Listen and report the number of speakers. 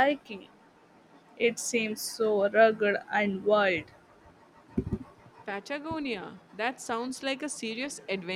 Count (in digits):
2